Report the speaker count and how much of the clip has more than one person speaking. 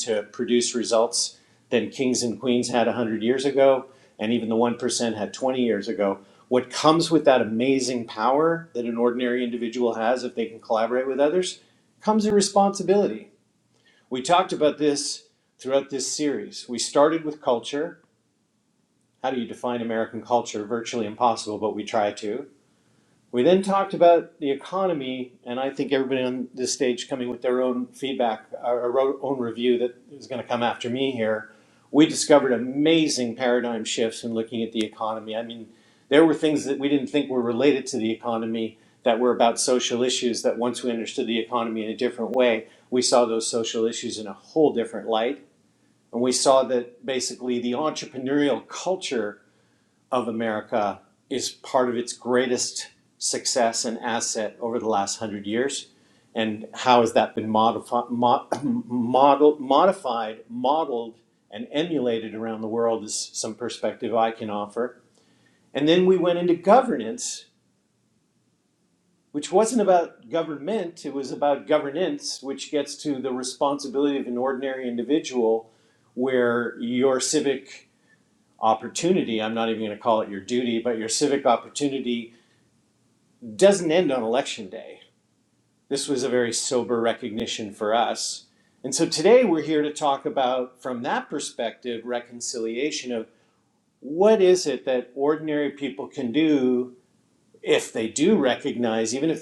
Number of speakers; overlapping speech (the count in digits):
1, no overlap